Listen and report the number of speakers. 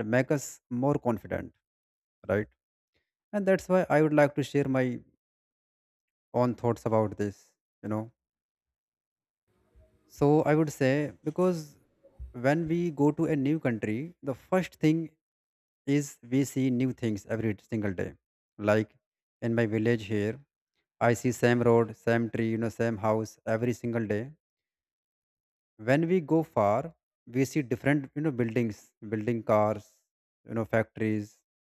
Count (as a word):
one